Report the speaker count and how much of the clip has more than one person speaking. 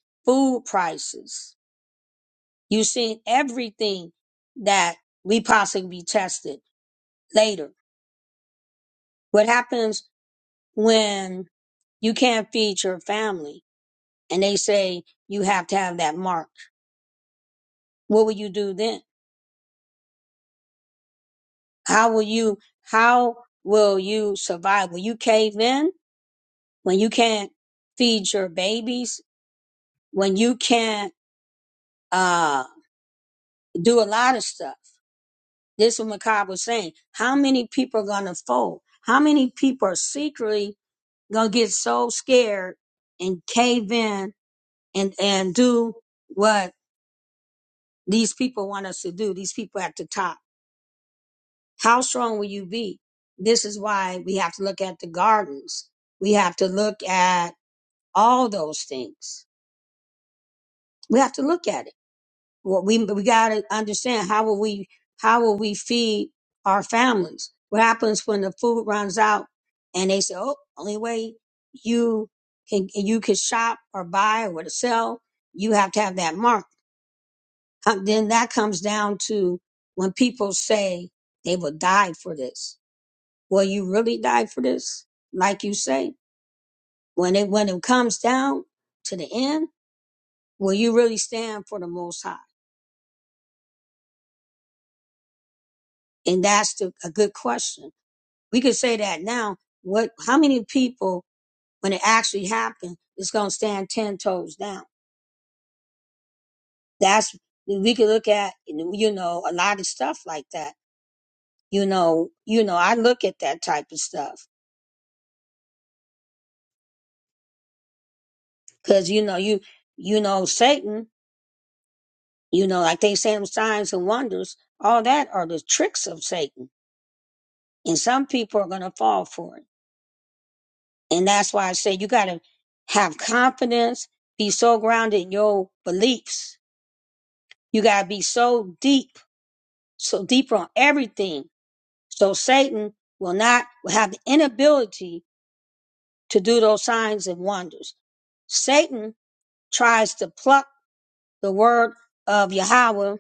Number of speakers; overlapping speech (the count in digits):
1, no overlap